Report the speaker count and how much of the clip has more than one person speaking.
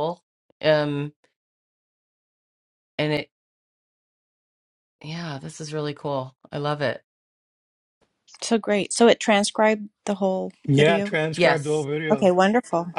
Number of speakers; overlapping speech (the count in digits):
3, about 7%